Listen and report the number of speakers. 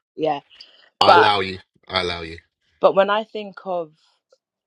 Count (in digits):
2